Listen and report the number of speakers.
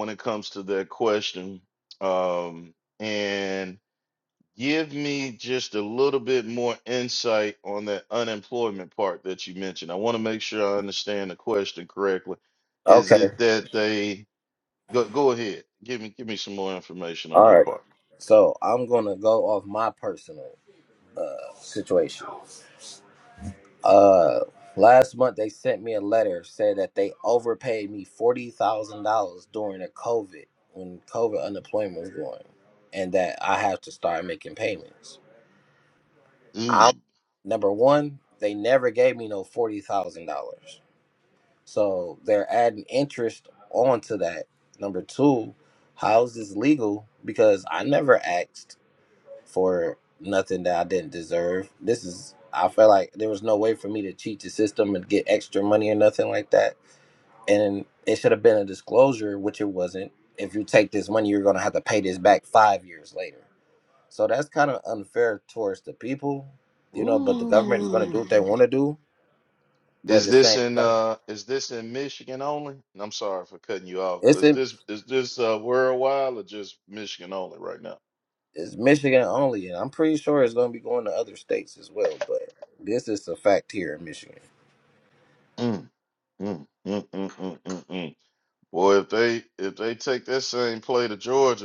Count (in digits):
2